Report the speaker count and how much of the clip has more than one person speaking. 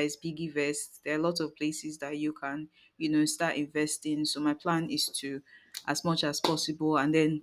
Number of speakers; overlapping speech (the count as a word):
one, no overlap